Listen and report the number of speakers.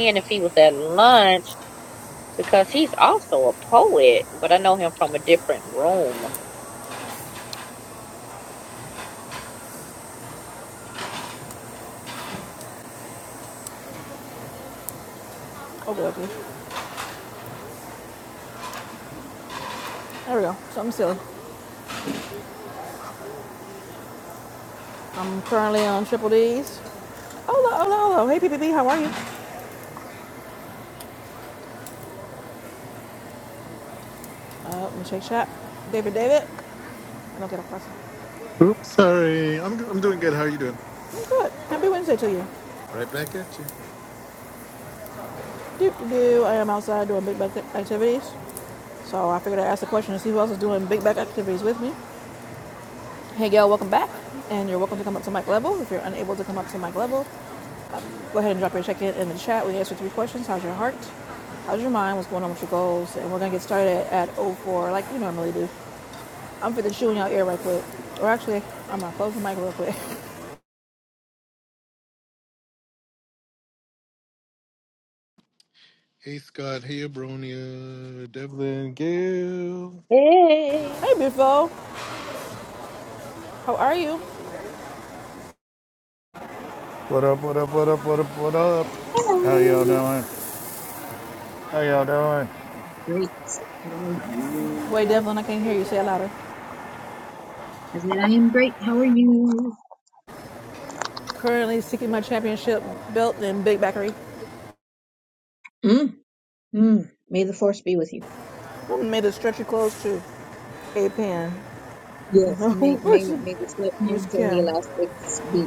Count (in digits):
5